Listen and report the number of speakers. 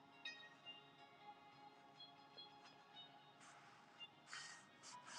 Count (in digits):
0